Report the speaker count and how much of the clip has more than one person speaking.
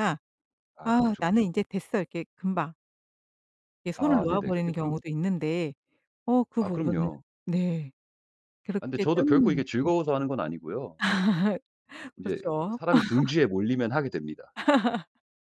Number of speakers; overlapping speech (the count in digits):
2, about 24%